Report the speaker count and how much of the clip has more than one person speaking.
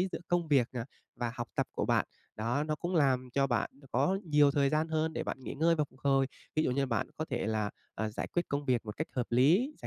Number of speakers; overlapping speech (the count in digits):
1, no overlap